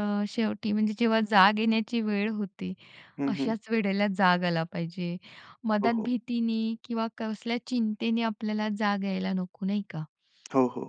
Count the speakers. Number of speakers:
two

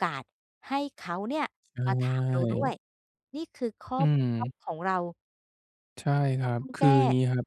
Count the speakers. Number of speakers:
two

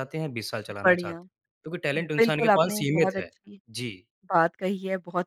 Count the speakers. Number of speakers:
two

